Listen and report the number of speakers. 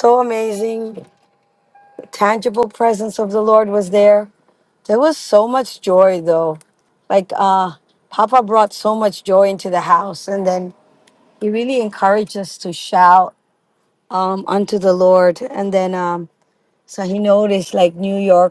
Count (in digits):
1